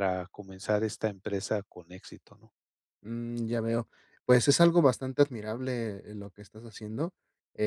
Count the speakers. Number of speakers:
two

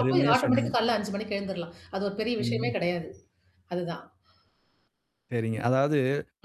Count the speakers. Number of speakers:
two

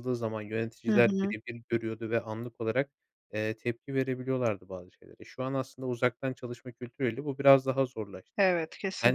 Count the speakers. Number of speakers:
two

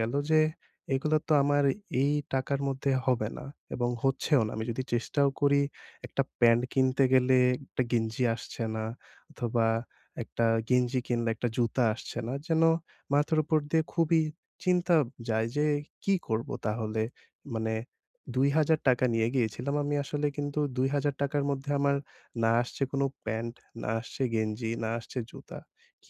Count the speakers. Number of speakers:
one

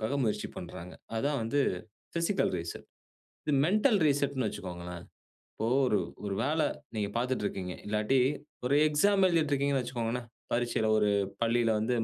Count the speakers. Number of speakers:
one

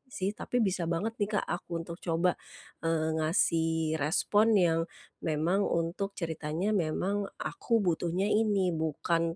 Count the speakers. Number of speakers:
one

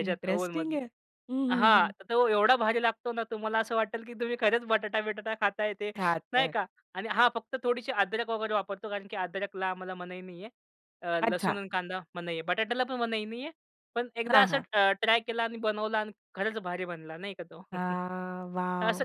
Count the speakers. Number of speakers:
two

